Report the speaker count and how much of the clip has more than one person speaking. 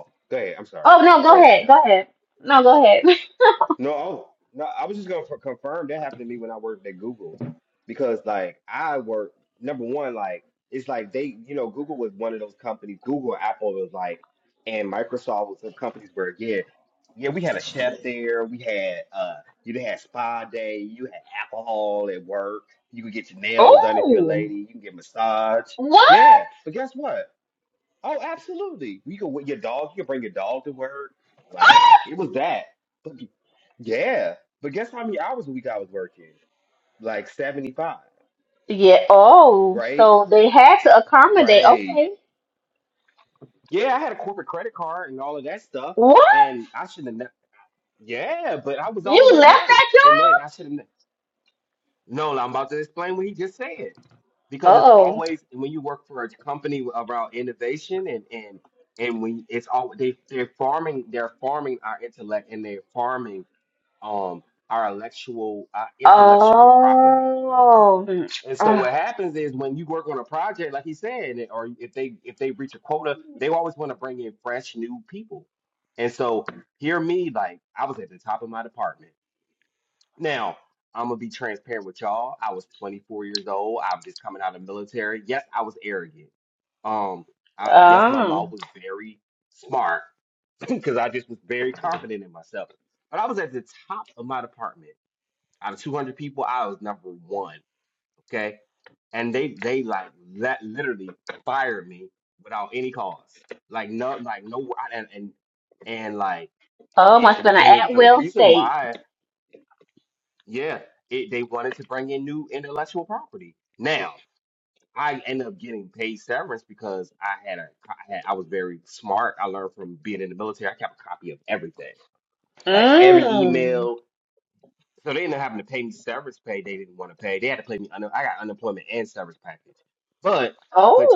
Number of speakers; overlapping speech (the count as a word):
two, about 7%